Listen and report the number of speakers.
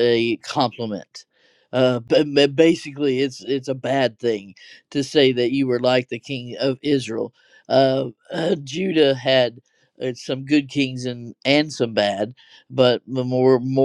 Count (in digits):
1